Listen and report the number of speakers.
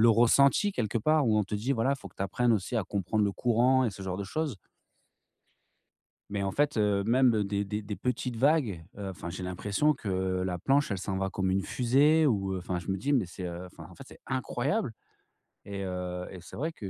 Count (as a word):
one